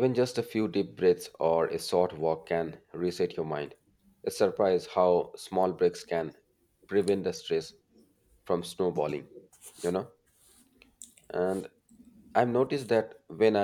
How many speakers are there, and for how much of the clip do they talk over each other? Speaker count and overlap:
1, no overlap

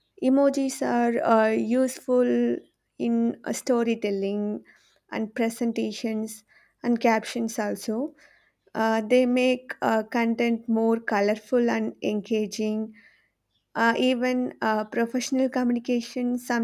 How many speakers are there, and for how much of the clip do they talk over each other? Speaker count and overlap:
1, no overlap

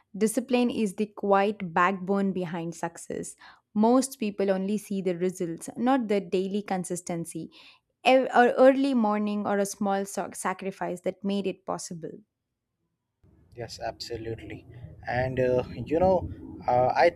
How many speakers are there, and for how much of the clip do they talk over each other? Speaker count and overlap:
2, no overlap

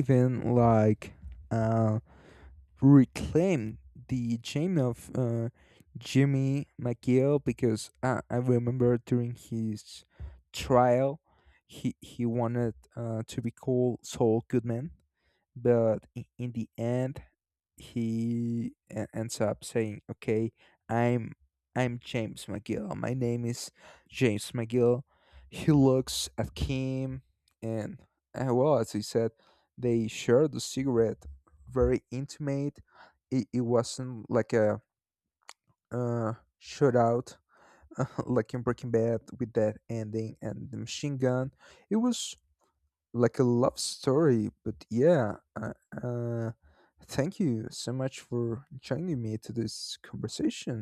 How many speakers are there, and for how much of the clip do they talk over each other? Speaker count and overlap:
1, no overlap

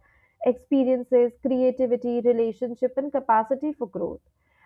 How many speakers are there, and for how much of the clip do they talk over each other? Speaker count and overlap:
1, no overlap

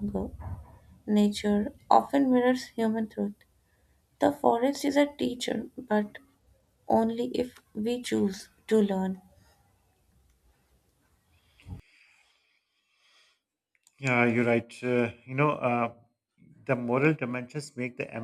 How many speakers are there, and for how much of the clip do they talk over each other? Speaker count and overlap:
2, no overlap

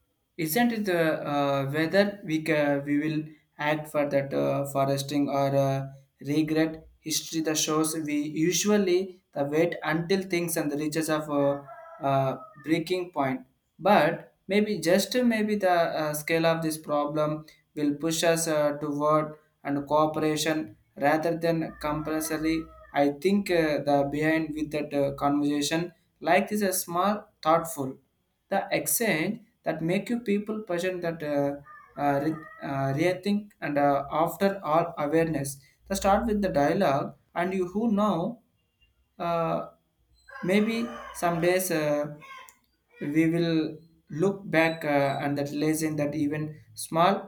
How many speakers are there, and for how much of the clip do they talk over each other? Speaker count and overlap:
1, no overlap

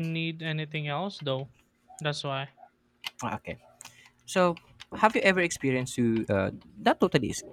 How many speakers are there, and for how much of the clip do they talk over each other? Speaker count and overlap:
2, no overlap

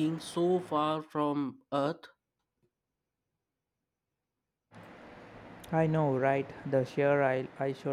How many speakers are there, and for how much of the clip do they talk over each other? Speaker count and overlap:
2, no overlap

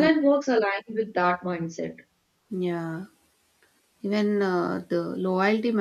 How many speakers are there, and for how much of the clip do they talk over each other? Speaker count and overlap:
2, about 2%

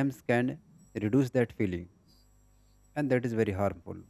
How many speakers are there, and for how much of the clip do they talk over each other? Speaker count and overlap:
1, no overlap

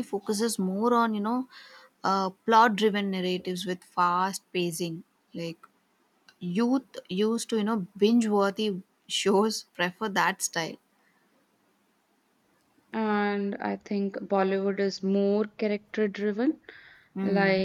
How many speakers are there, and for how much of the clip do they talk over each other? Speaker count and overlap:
2, about 2%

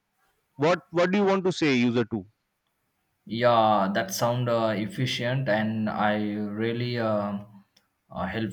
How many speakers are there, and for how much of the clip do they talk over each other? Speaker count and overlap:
2, no overlap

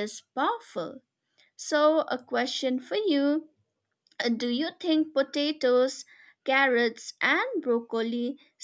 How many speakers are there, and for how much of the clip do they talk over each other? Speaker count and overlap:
1, no overlap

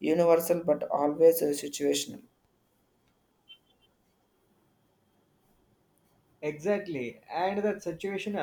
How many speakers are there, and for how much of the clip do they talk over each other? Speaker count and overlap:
2, no overlap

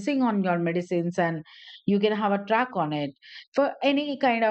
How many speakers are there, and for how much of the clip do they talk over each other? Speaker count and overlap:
1, no overlap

